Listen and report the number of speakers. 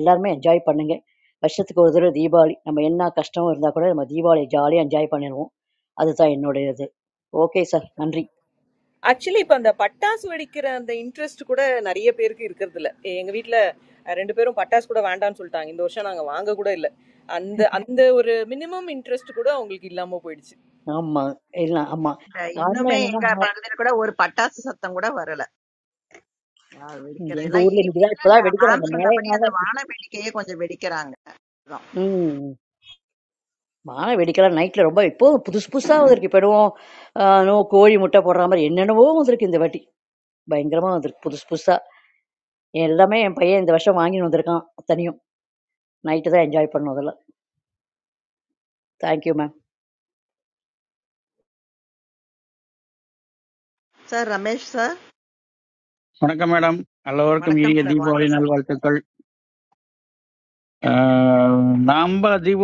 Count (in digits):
4